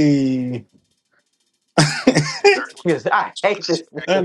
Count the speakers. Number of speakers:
2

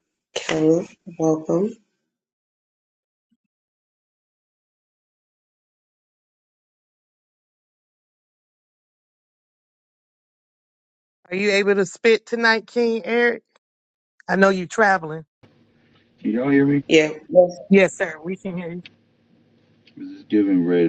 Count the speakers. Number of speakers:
3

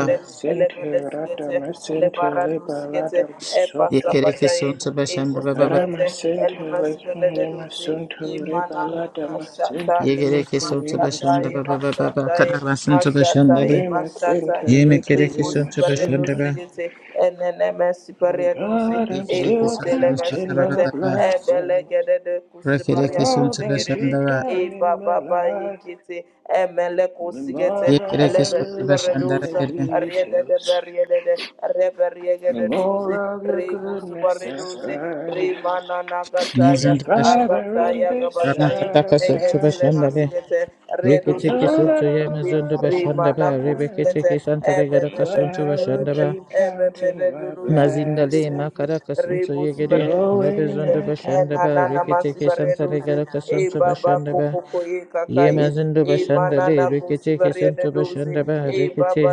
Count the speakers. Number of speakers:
3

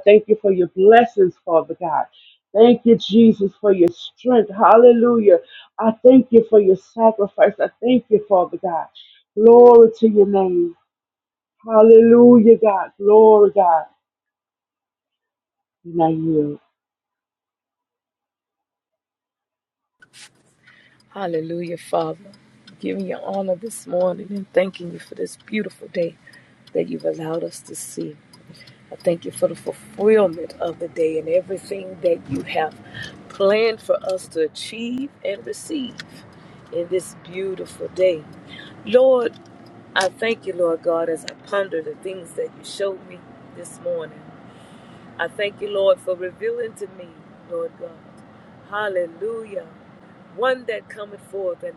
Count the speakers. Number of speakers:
2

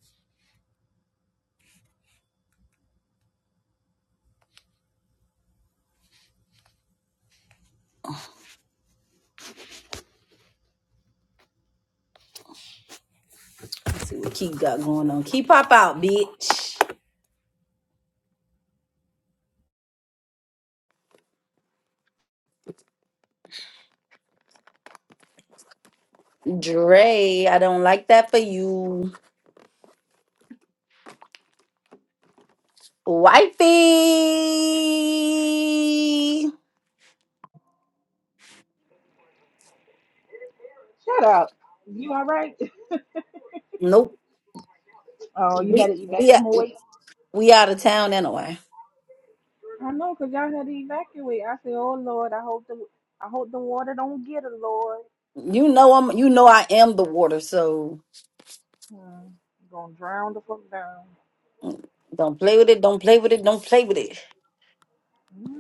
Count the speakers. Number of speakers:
2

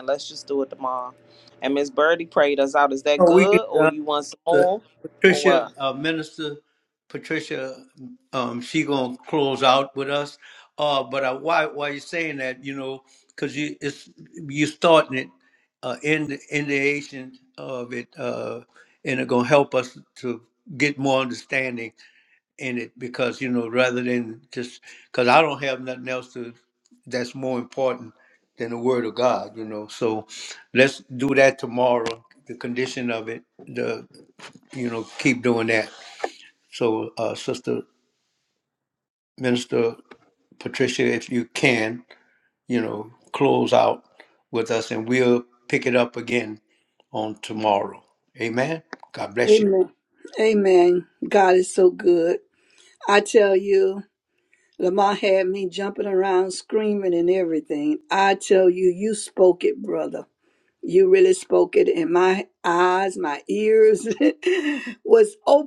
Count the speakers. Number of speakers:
3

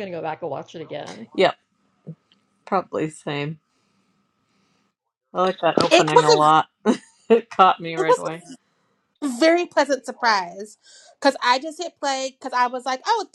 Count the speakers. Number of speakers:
3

